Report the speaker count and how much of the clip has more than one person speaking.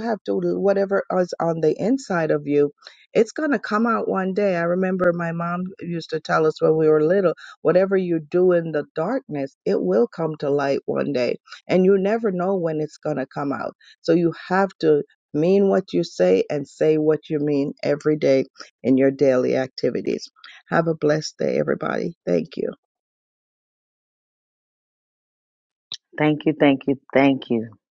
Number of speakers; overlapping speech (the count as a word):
two, no overlap